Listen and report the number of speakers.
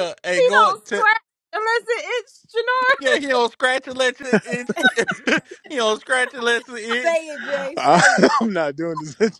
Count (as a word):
four